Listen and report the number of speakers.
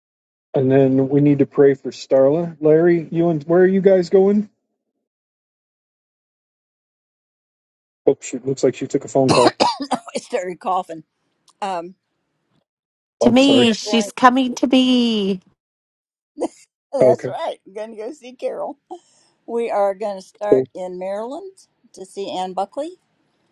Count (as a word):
three